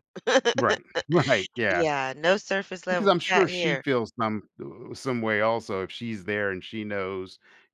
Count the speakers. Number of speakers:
two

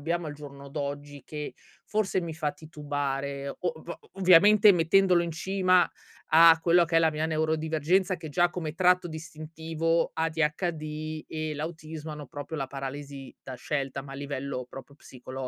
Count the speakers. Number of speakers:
one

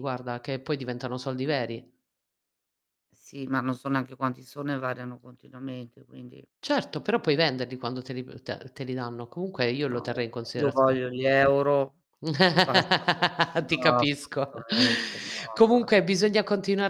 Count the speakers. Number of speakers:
two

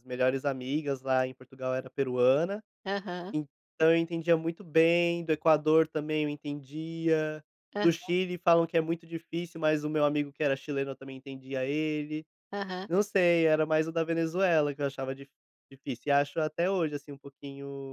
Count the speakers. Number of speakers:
two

